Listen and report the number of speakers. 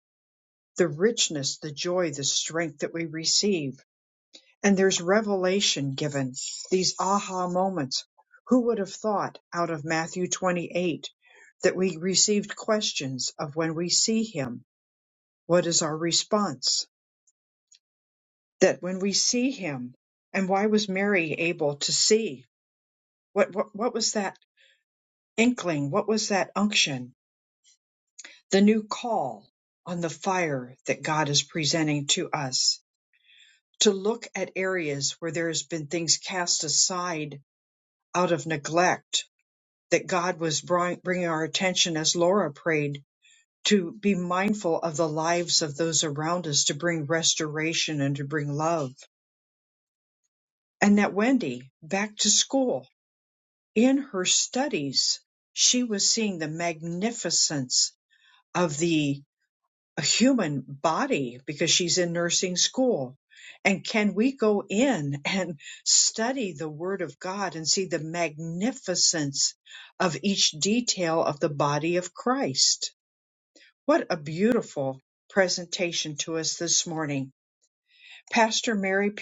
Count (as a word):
one